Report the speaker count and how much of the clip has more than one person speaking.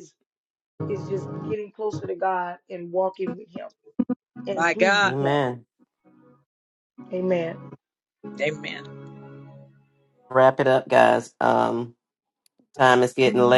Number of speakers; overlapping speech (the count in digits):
3, about 7%